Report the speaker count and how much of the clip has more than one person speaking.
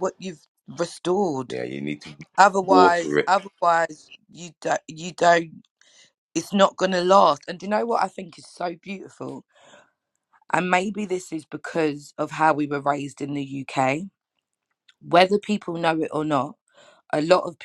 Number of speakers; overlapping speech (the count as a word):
two, about 4%